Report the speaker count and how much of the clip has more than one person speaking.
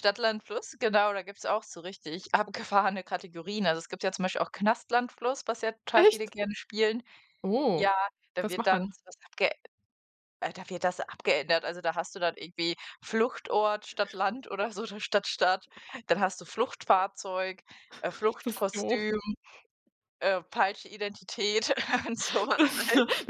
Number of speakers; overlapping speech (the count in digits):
2, about 6%